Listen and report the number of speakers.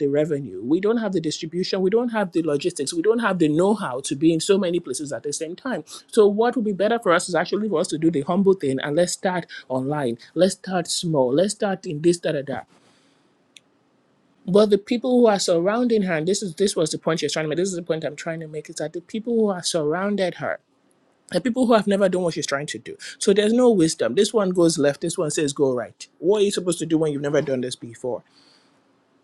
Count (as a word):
one